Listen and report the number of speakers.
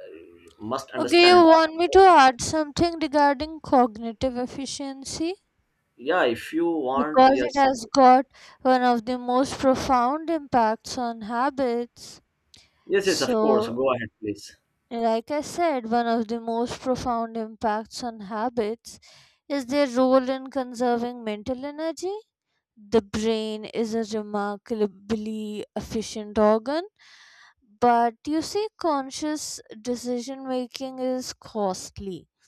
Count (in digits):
2